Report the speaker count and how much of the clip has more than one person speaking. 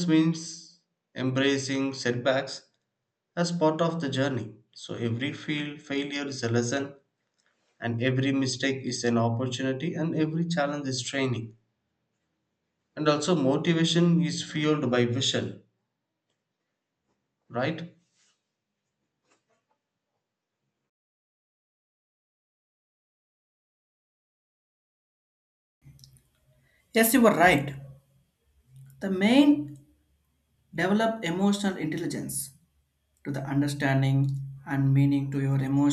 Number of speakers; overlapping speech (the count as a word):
two, no overlap